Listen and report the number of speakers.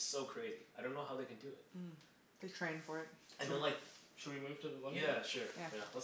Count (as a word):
three